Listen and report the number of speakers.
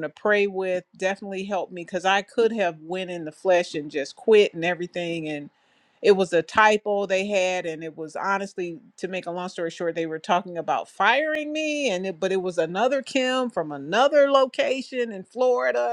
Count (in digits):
1